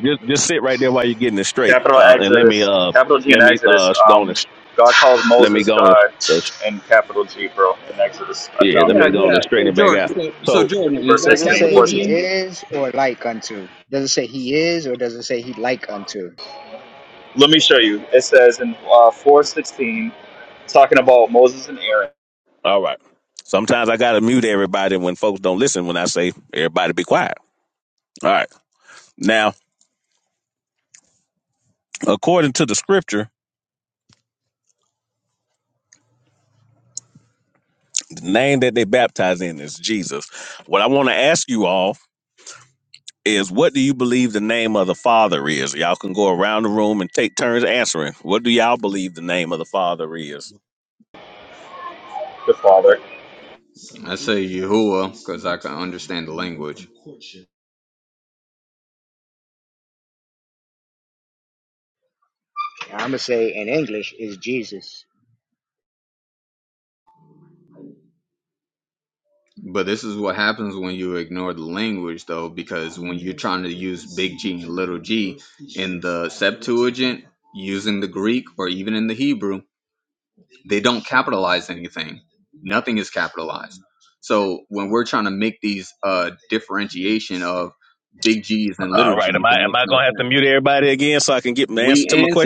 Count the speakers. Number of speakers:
four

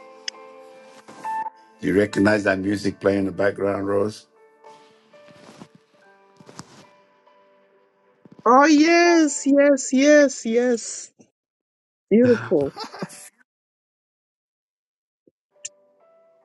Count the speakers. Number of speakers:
two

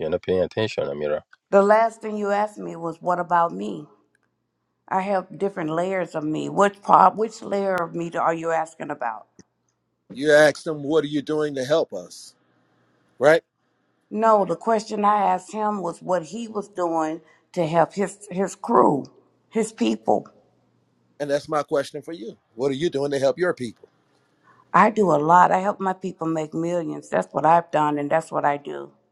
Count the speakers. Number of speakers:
three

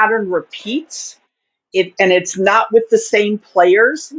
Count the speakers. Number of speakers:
one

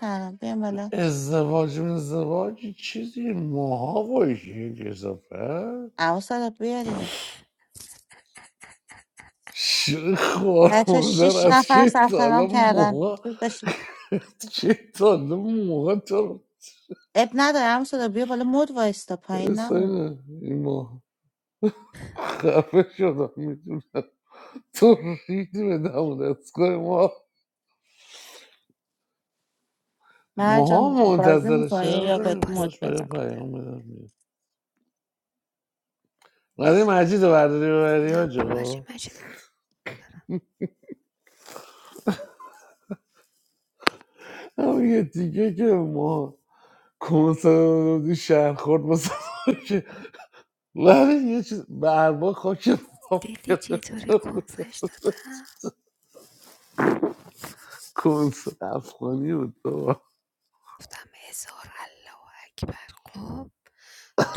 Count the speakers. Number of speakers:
three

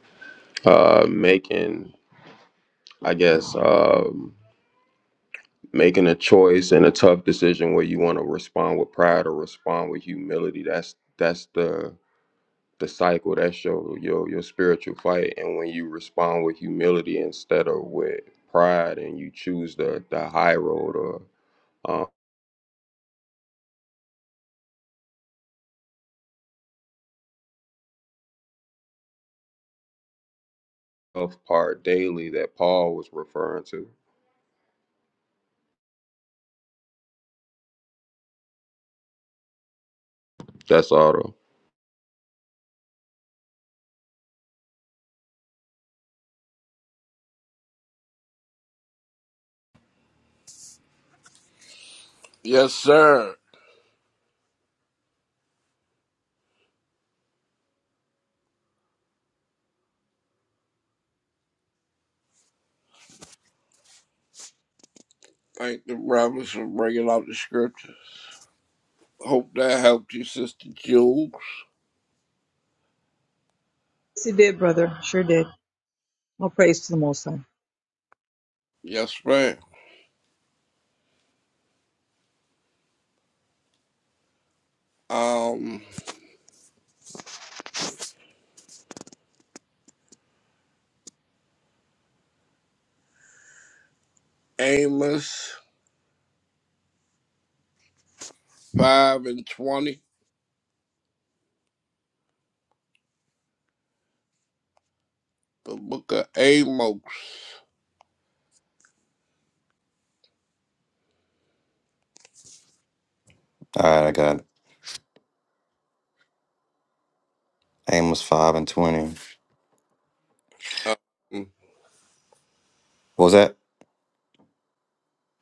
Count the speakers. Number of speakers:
four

